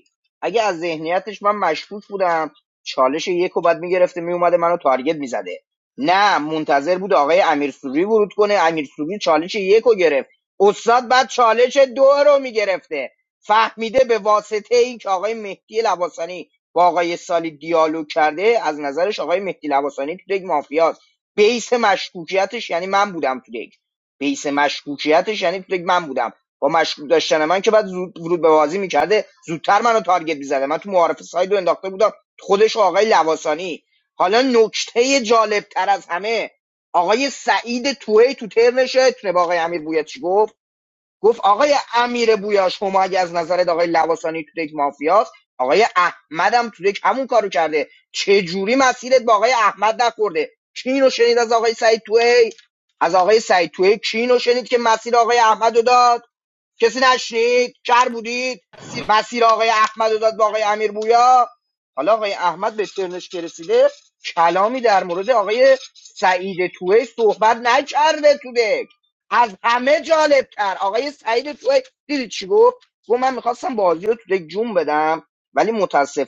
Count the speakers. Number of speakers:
1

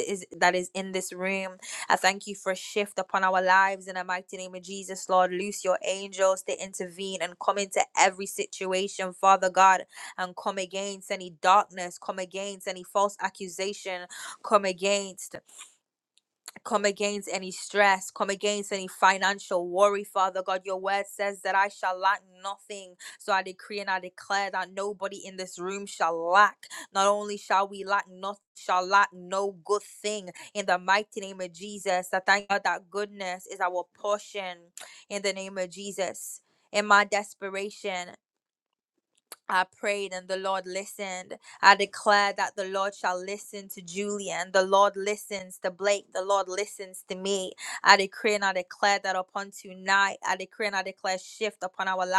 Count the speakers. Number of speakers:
1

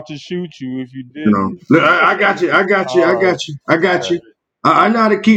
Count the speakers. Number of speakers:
2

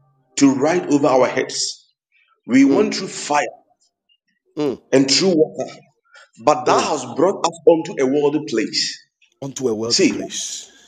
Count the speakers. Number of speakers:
2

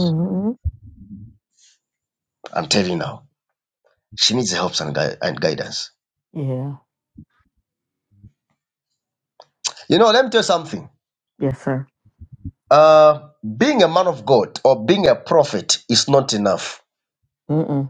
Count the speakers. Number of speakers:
2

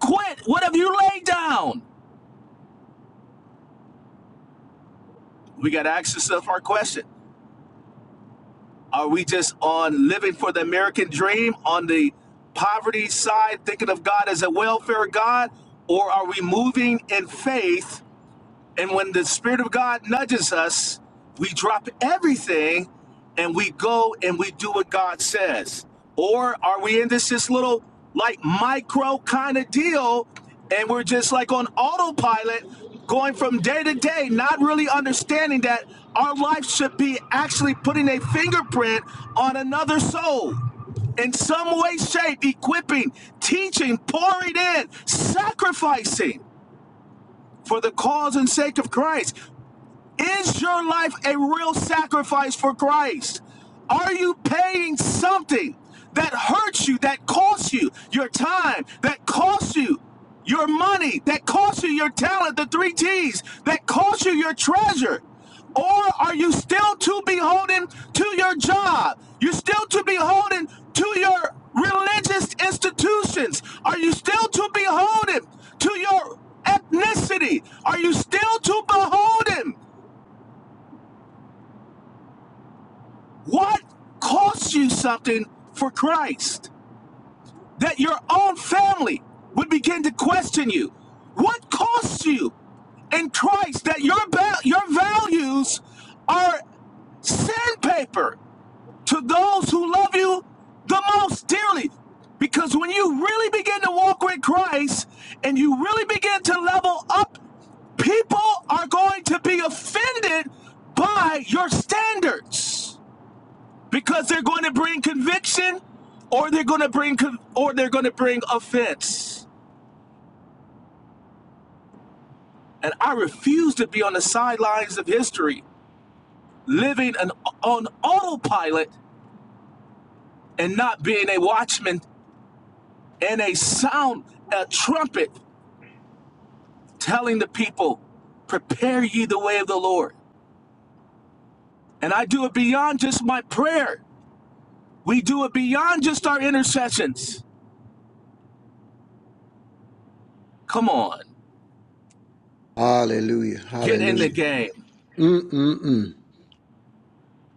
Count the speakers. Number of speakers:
2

